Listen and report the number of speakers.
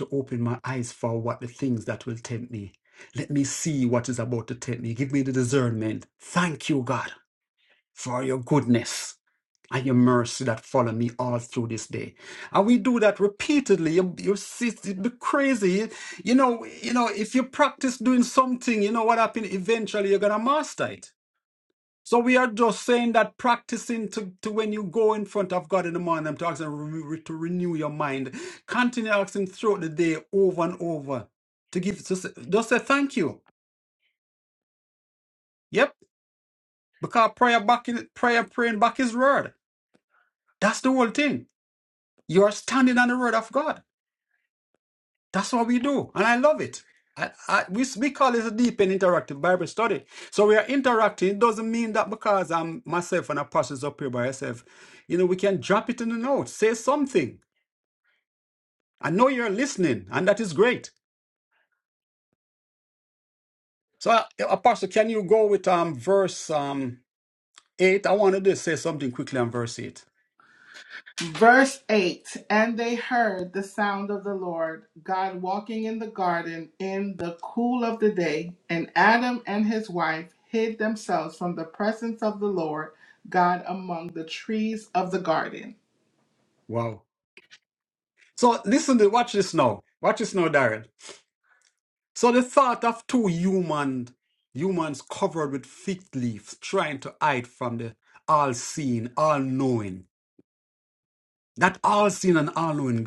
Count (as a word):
two